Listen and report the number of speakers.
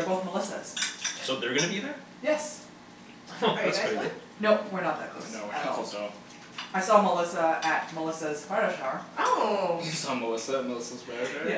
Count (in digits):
4